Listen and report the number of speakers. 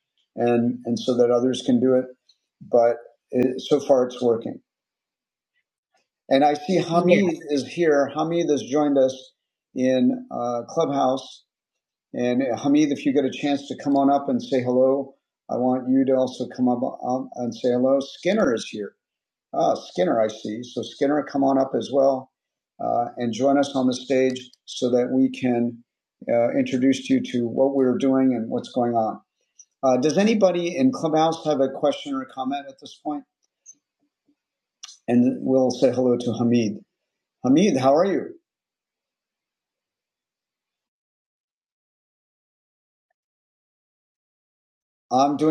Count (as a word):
one